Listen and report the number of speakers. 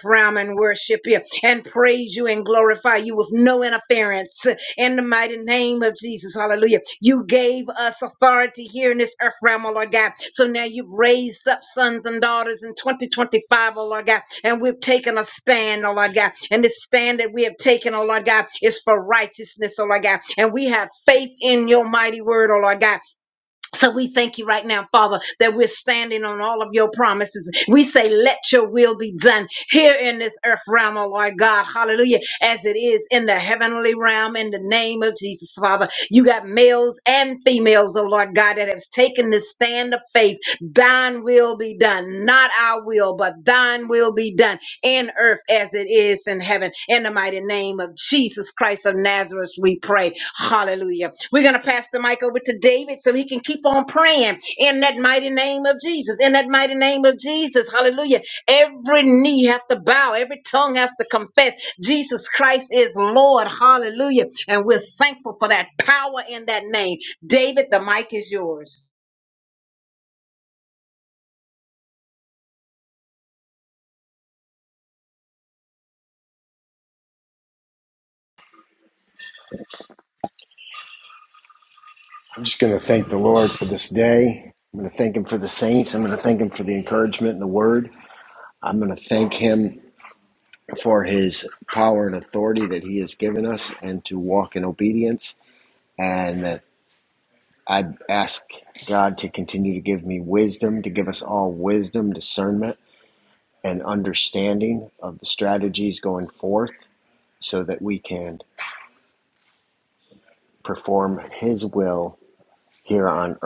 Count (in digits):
2